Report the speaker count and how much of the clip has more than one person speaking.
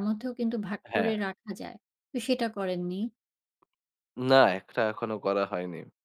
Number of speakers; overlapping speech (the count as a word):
two, about 5%